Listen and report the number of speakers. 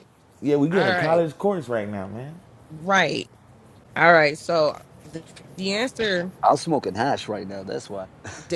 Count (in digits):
3